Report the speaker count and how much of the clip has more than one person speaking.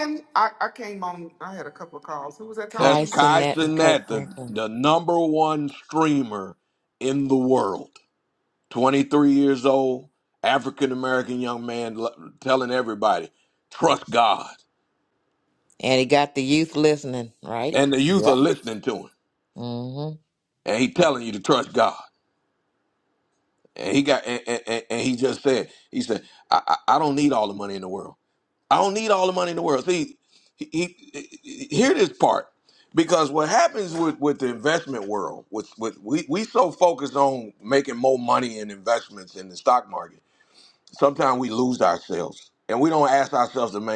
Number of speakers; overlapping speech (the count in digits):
3, about 5%